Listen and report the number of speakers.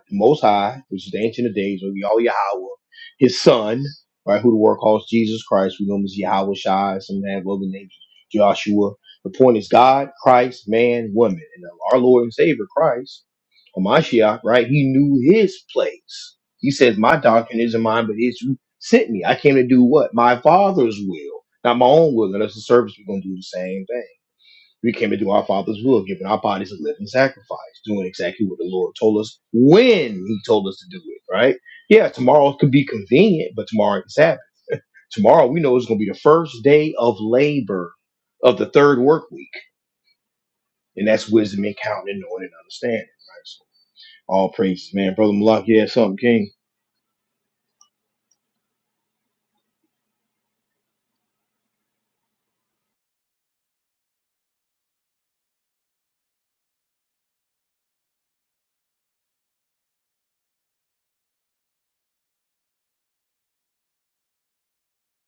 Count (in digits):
1